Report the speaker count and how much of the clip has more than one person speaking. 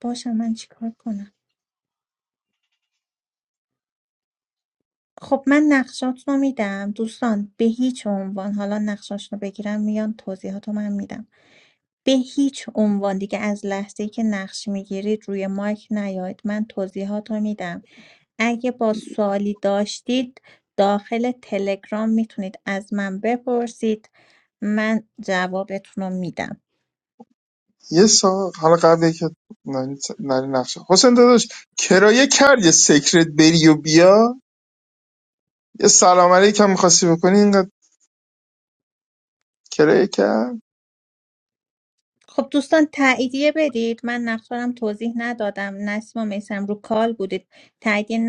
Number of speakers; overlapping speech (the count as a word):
two, no overlap